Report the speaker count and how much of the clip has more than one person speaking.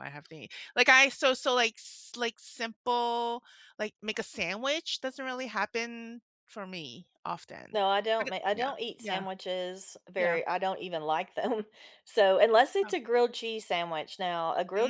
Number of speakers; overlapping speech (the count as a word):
two, about 10%